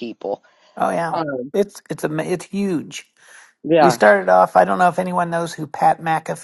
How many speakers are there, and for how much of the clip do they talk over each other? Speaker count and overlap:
2, about 4%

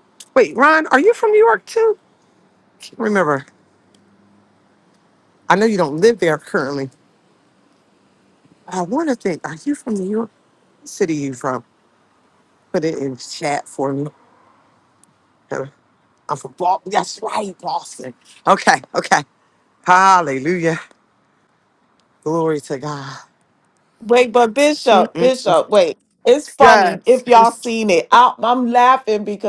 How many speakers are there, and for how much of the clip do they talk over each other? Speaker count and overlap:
2, about 4%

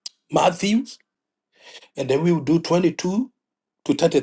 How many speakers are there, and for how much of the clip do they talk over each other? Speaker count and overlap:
1, no overlap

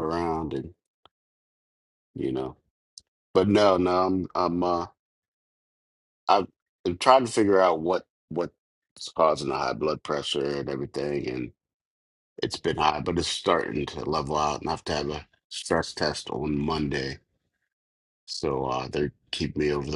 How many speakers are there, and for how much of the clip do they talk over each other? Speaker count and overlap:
1, no overlap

